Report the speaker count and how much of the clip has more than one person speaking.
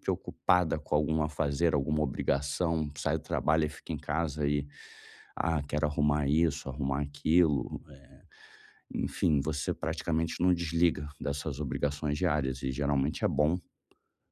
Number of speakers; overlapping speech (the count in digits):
1, no overlap